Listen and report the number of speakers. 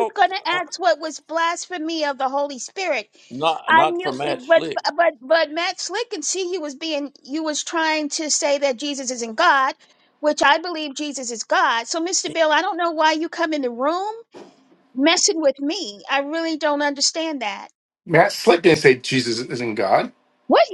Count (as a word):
three